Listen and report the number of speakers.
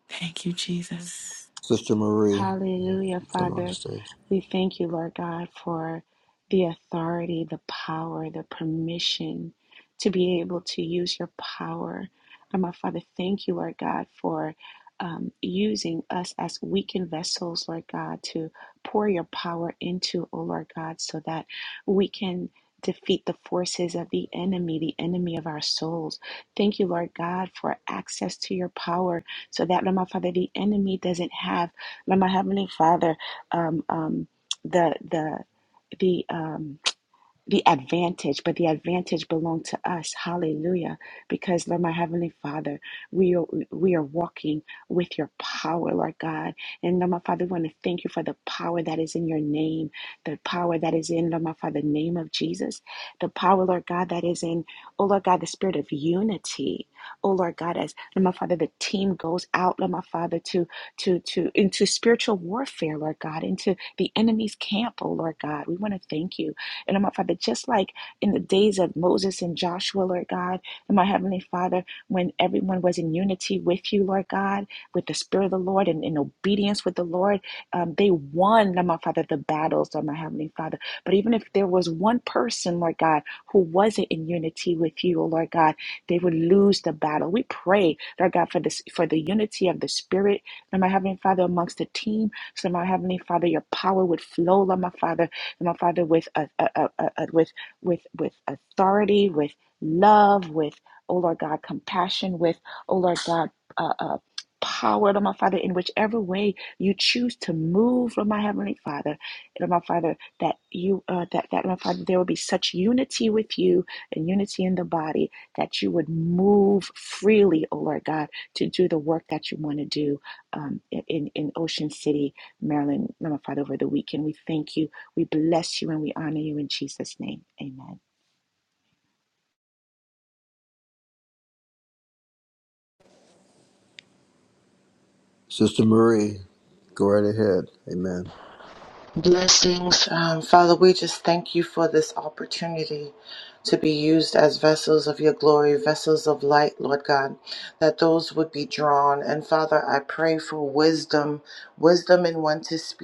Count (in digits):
4